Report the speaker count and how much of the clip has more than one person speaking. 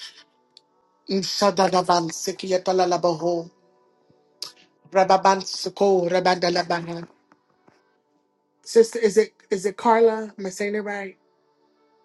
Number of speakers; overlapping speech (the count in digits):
1, no overlap